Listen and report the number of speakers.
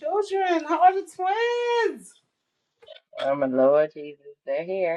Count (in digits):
2